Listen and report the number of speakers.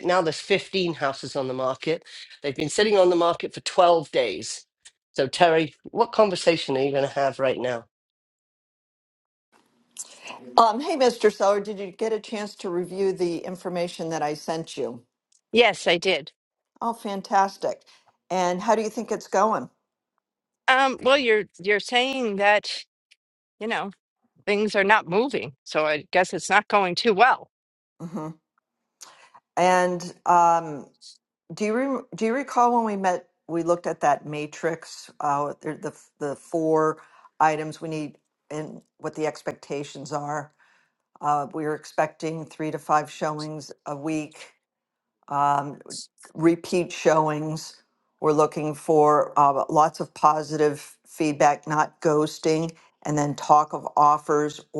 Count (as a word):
three